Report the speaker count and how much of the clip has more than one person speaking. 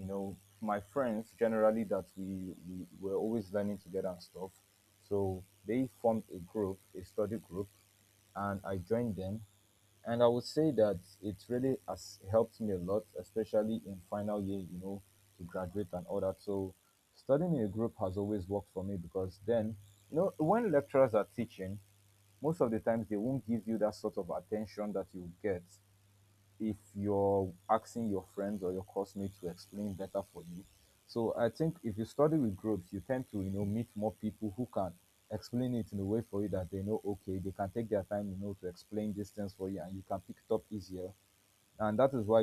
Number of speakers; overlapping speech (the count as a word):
one, no overlap